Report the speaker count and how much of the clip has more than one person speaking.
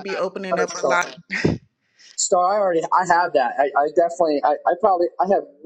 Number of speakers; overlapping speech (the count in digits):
2, no overlap